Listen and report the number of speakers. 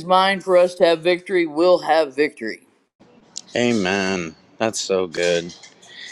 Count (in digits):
2